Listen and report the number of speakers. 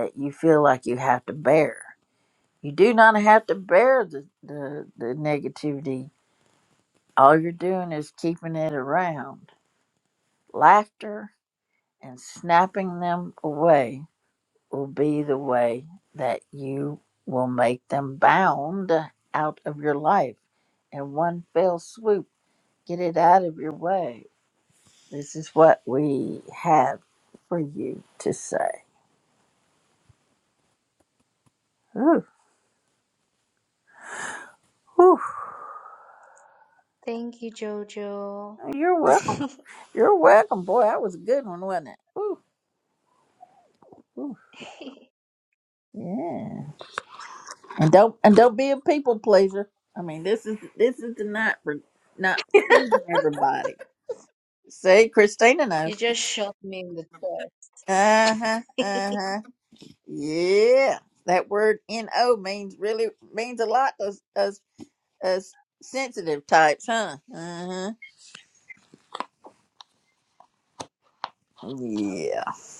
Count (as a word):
two